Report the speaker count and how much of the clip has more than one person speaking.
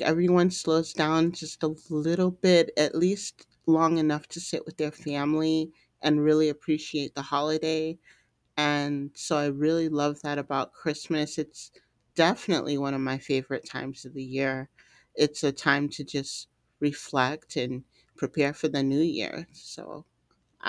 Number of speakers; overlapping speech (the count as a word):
one, no overlap